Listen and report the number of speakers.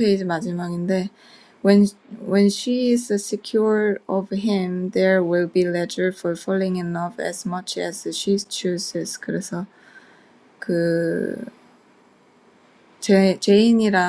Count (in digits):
1